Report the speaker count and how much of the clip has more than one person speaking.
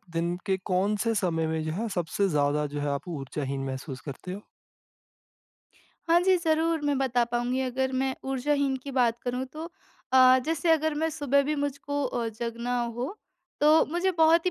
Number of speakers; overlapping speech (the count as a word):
two, no overlap